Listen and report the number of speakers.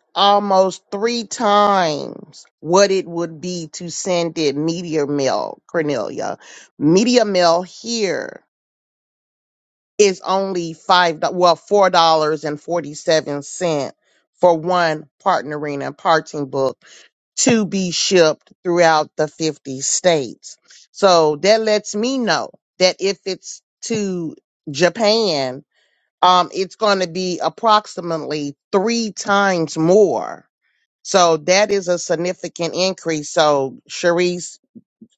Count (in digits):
1